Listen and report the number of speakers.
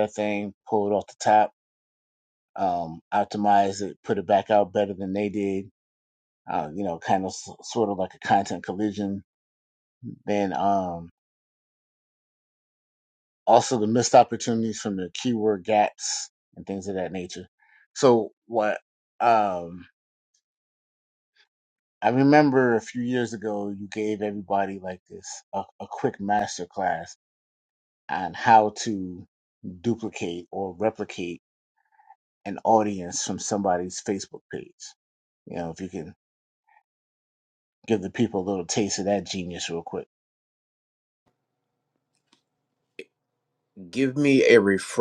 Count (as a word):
two